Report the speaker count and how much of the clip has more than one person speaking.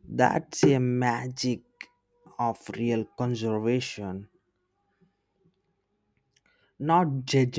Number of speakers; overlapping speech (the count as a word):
one, no overlap